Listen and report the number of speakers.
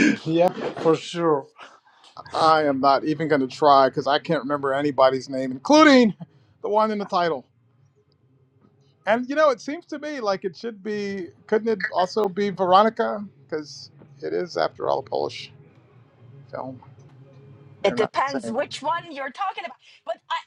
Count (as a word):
three